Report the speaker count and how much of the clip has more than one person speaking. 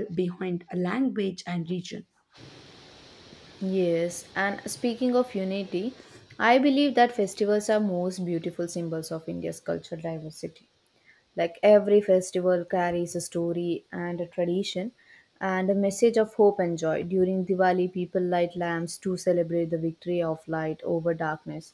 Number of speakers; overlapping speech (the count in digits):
2, no overlap